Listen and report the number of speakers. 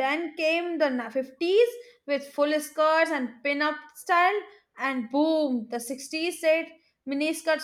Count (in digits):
1